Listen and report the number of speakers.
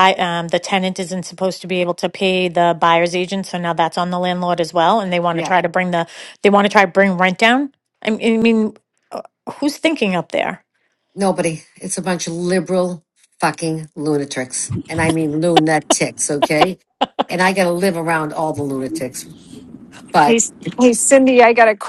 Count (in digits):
3